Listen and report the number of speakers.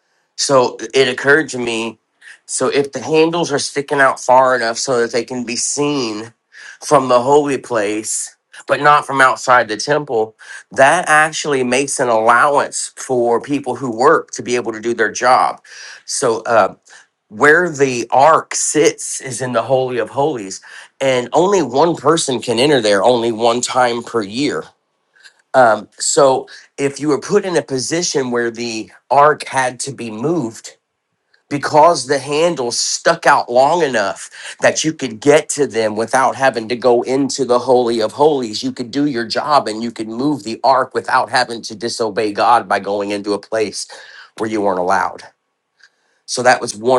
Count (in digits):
1